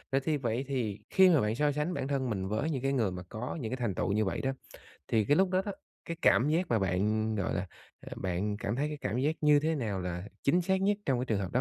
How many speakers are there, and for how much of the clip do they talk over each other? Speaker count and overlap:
1, no overlap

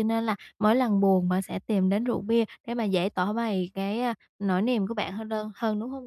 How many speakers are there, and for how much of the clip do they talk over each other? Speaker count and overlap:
1, no overlap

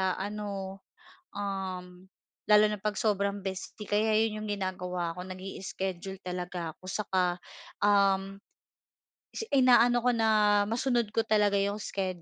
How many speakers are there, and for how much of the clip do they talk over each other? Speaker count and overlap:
1, no overlap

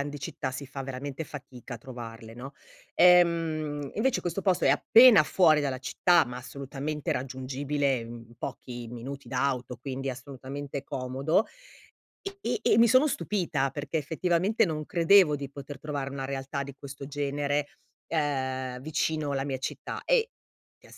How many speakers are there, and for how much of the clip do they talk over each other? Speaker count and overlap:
1, no overlap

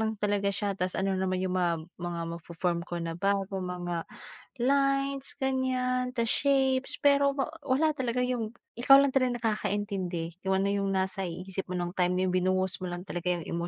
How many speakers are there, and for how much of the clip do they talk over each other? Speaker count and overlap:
1, no overlap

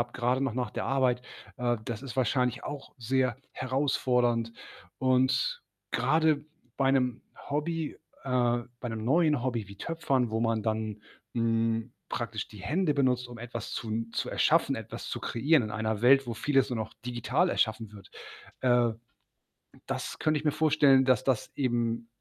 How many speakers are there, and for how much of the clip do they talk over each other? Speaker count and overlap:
1, no overlap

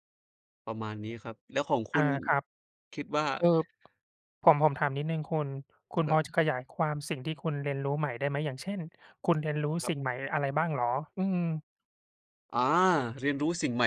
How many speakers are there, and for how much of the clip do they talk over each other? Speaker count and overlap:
2, about 2%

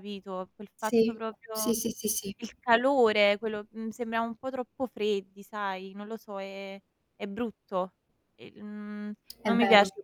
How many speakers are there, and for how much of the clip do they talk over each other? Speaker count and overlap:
2, about 9%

